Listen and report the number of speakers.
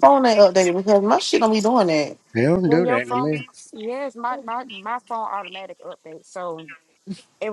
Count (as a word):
three